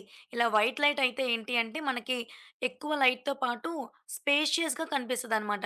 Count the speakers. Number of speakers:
one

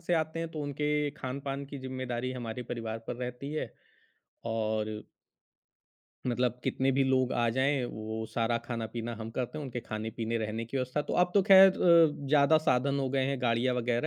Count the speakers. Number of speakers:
one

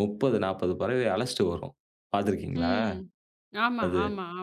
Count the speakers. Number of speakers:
two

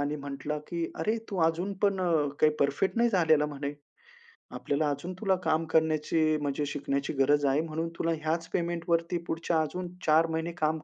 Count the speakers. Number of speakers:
one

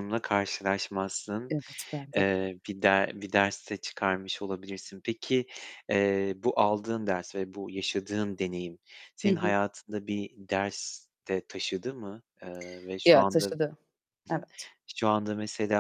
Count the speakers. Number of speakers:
two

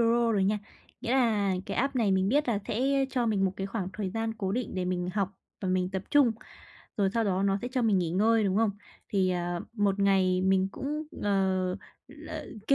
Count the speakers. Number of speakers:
one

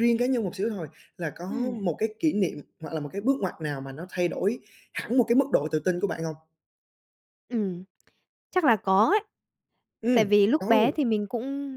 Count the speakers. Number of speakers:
two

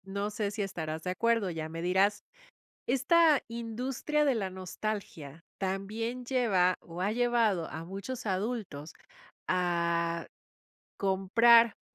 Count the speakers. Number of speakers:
one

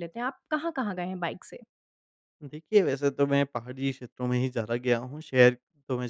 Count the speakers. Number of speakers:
two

